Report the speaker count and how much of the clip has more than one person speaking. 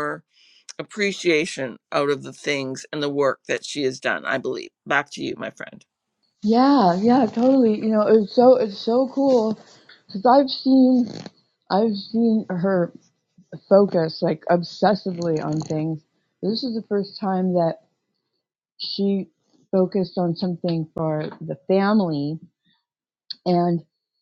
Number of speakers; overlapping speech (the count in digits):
2, no overlap